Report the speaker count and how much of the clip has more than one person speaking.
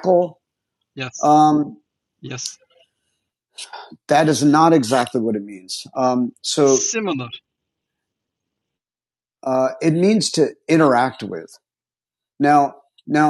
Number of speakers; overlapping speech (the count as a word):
two, about 2%